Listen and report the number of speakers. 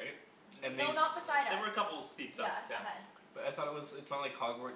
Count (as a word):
three